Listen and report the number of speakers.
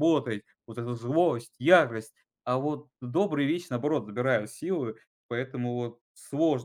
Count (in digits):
1